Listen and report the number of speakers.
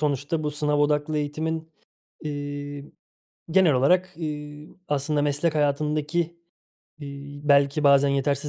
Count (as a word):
one